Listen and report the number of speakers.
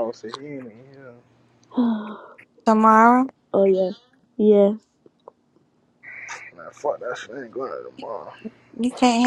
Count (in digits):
3